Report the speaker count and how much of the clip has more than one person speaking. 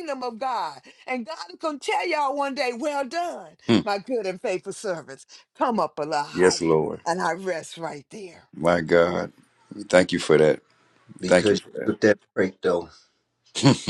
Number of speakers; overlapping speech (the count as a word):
three, about 9%